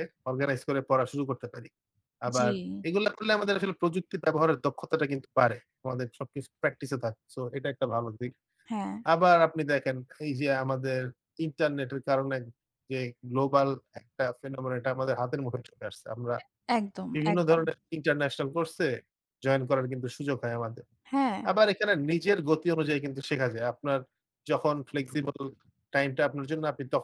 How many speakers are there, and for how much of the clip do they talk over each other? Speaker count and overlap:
two, about 3%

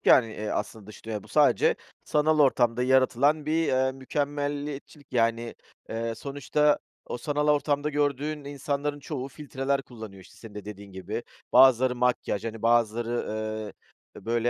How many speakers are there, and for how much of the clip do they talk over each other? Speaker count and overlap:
one, no overlap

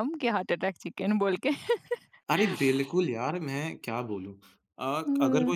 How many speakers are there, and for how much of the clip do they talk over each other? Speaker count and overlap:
two, about 9%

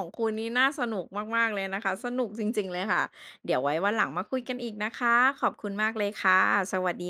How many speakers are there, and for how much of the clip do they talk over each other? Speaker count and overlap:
one, no overlap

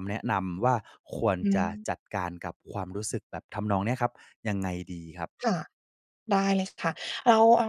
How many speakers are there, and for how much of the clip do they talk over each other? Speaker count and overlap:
two, about 5%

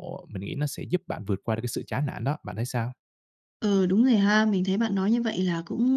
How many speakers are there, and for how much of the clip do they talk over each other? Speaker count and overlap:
two, no overlap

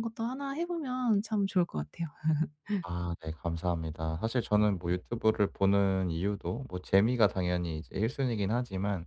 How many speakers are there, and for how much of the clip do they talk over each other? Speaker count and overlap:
two, no overlap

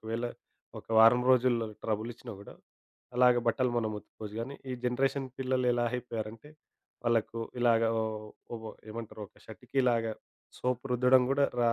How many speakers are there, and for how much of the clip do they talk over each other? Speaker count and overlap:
one, no overlap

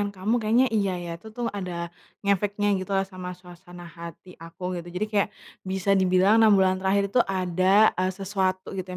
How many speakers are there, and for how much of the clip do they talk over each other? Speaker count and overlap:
one, no overlap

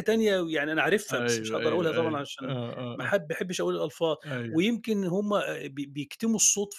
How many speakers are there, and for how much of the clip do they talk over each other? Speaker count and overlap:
two, about 29%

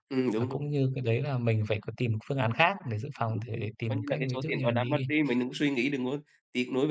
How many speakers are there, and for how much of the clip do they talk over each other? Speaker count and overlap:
two, about 20%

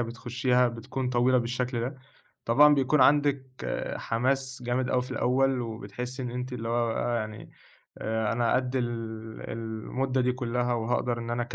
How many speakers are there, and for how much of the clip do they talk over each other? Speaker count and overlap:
one, no overlap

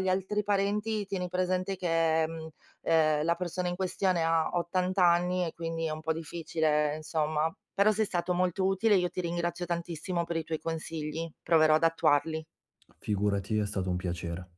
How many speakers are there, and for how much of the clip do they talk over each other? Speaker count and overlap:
two, no overlap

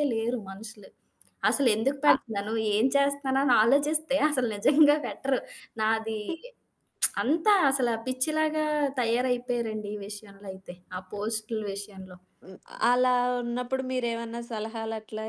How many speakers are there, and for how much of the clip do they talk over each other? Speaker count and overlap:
two, about 1%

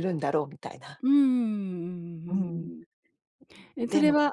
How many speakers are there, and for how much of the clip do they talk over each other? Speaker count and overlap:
two, about 6%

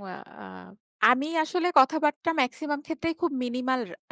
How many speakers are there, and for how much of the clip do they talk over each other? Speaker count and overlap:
one, no overlap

